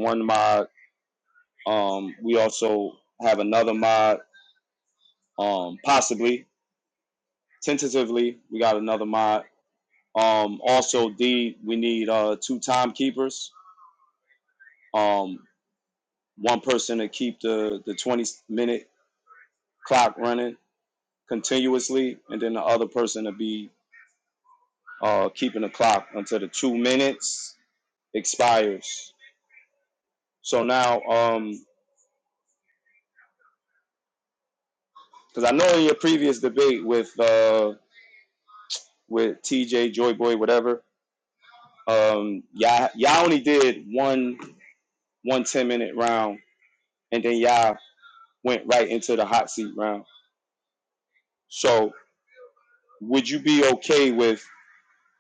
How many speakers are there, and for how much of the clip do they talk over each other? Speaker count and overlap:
1, no overlap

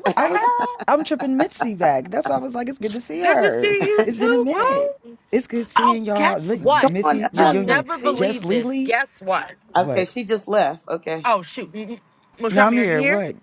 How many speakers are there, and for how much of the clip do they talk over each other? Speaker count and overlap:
3, about 45%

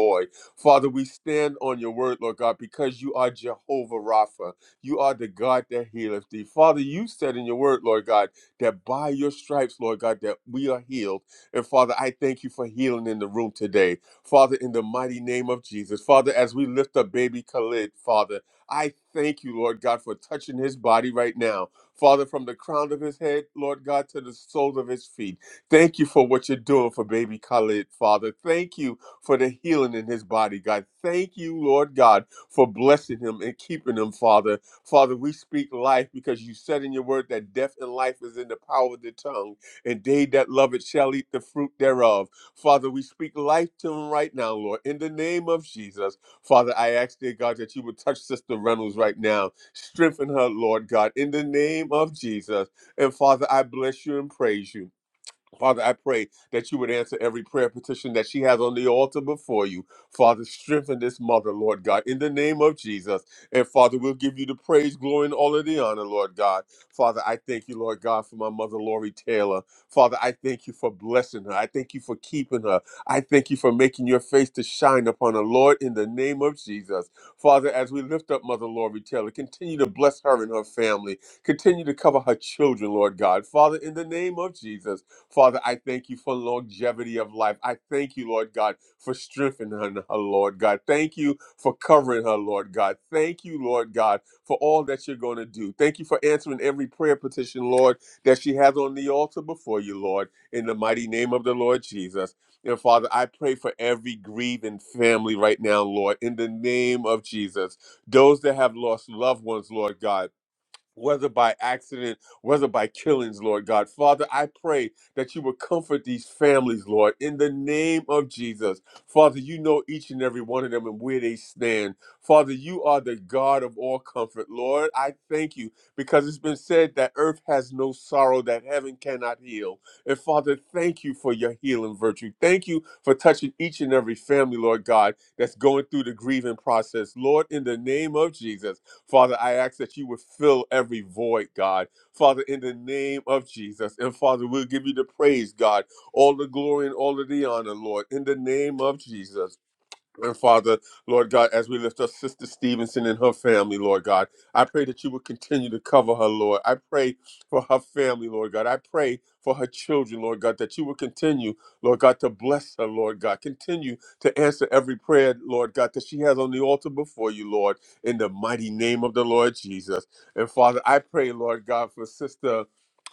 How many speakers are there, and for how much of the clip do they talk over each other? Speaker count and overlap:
1, no overlap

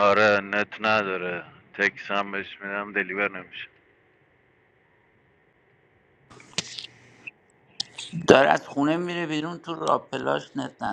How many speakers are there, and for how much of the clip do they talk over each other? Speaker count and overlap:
2, no overlap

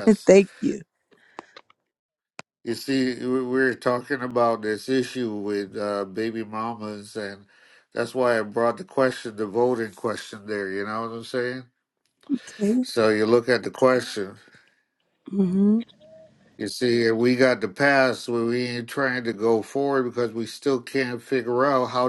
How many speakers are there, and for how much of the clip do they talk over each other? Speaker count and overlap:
2, no overlap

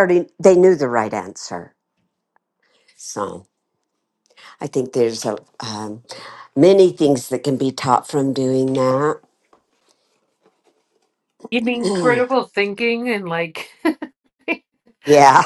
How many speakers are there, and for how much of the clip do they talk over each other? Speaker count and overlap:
2, no overlap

